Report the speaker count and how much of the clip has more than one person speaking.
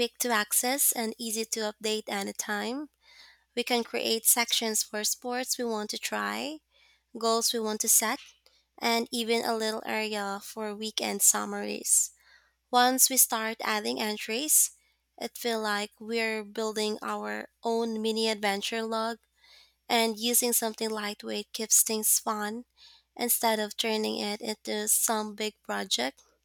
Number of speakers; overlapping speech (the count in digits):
1, no overlap